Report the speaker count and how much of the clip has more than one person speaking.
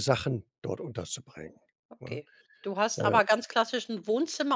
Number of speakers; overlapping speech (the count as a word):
two, about 10%